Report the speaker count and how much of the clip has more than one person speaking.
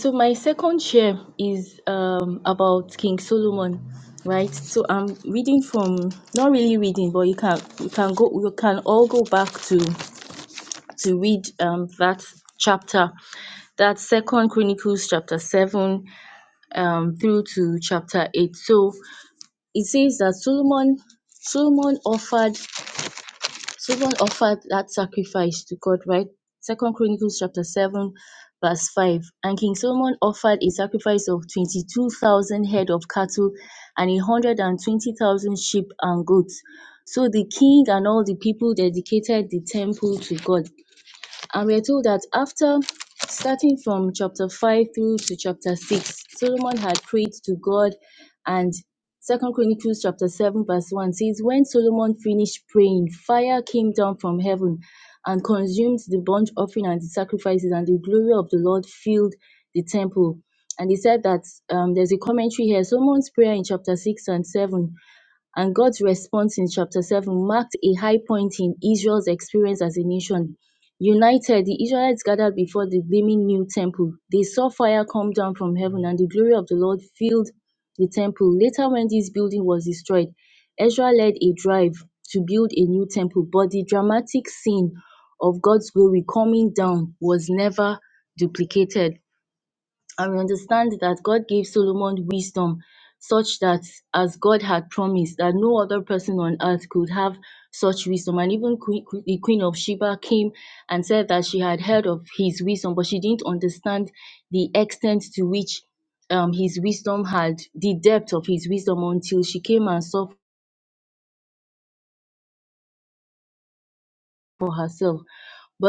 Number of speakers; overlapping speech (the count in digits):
1, no overlap